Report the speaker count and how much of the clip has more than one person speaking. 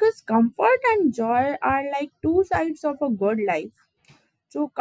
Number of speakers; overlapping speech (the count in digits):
1, no overlap